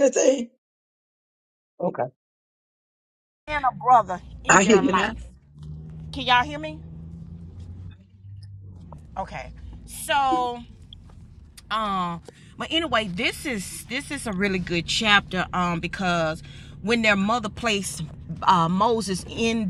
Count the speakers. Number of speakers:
two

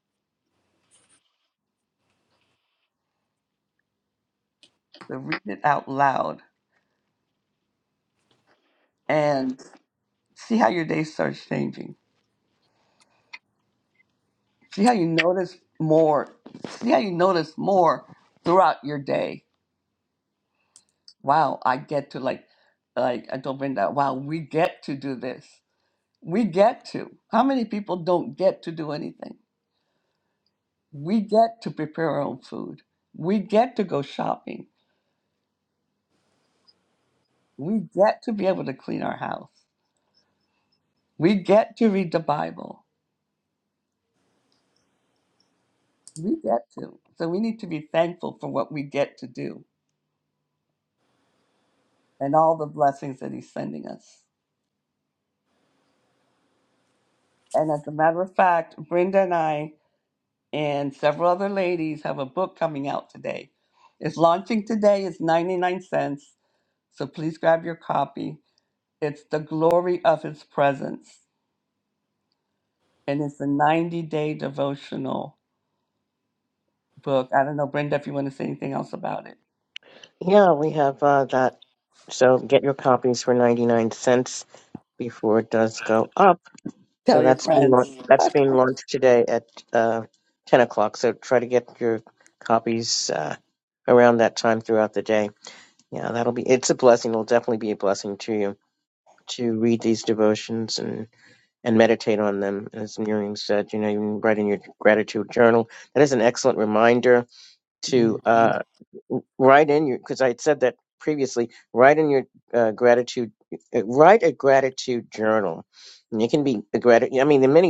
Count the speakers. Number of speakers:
two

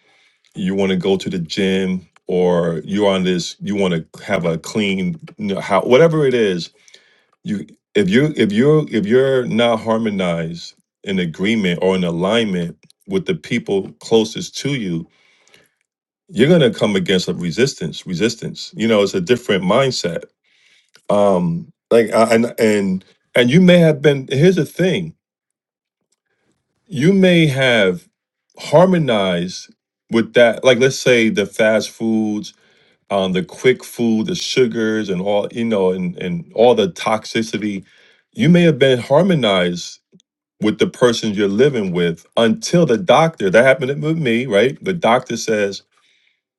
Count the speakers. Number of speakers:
one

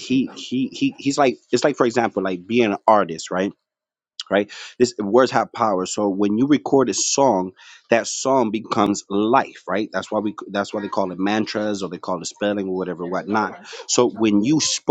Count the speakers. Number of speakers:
one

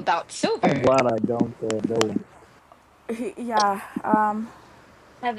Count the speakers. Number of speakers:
three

